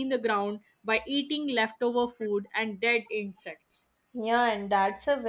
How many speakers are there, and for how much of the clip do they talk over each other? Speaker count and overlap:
two, no overlap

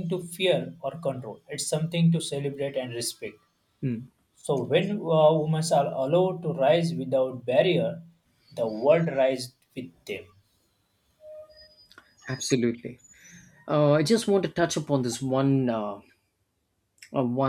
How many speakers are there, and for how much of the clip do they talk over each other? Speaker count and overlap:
two, no overlap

